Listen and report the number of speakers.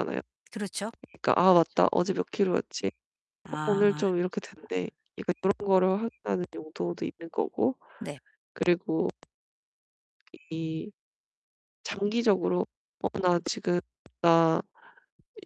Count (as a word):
two